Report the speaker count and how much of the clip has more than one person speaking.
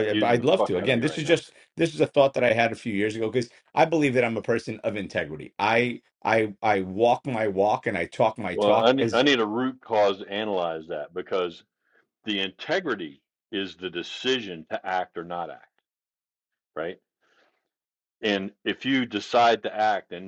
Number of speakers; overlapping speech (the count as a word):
two, about 10%